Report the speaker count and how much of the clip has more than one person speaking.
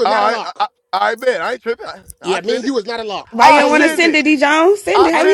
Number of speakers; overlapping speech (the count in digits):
3, about 41%